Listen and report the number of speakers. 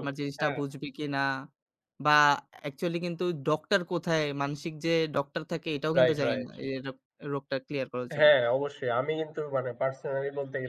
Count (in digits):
2